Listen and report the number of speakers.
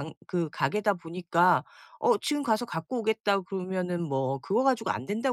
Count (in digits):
1